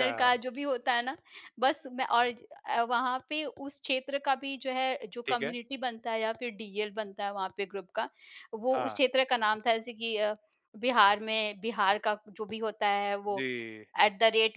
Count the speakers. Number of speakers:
two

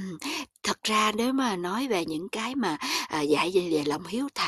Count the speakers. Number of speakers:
one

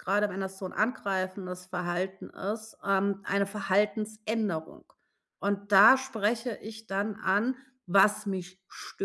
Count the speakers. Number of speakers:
one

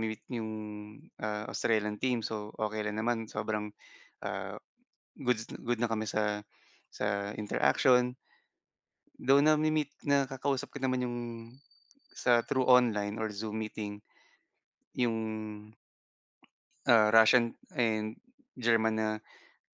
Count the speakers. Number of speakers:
one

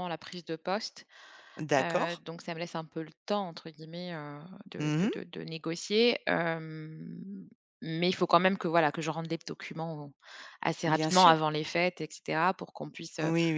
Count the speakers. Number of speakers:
two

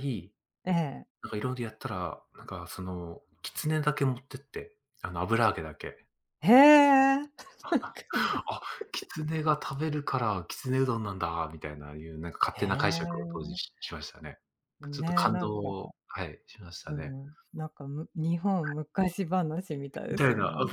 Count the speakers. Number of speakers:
two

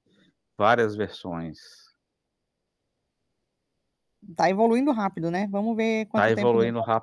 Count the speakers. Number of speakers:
two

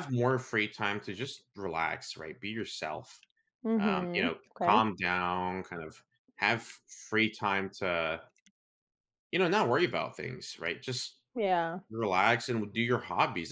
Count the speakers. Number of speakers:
two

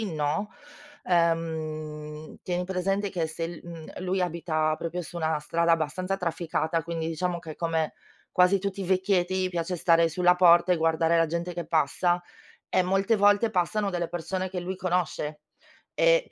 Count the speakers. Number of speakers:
one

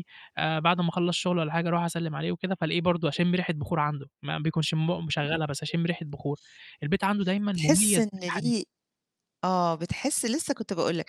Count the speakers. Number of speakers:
two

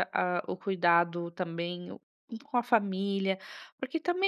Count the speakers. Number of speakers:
one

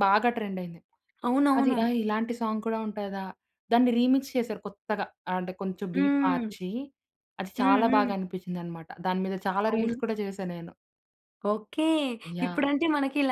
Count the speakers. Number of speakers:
two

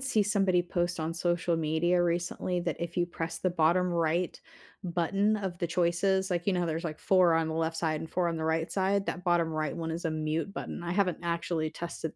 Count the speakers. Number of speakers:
one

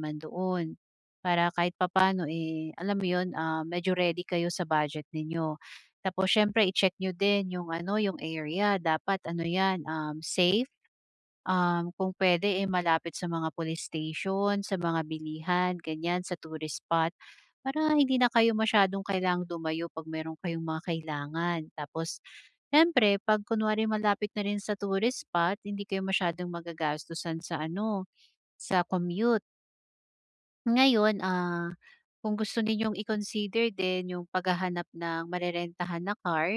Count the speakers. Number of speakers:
one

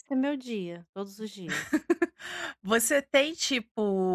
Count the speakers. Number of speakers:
two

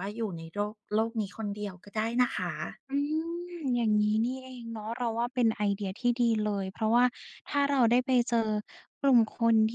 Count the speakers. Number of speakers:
two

